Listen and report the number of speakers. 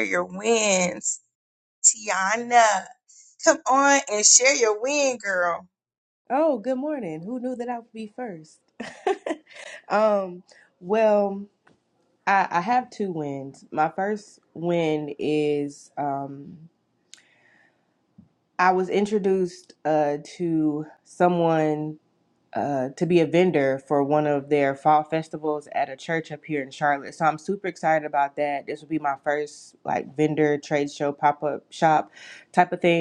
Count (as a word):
two